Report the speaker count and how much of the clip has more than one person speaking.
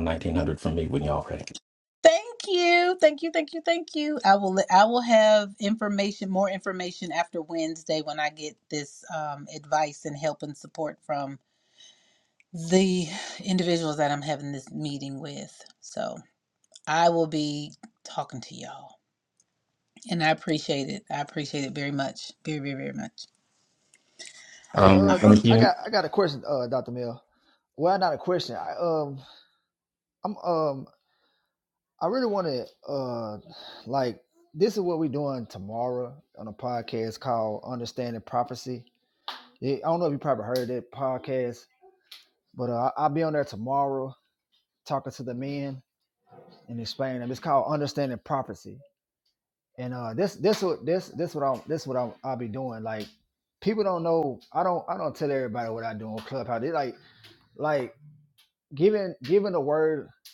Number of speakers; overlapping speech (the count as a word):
three, about 1%